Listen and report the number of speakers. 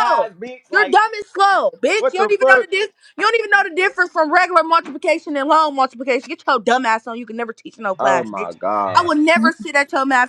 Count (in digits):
2